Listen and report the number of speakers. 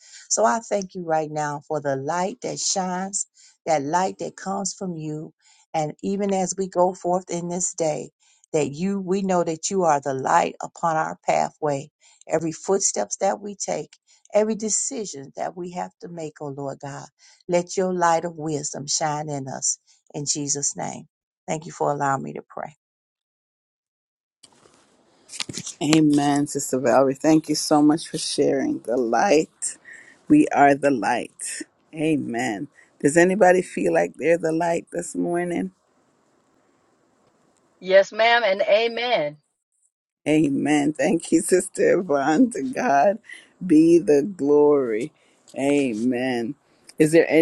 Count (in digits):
3